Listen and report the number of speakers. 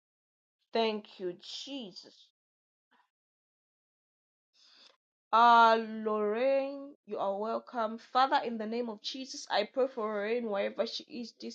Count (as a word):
one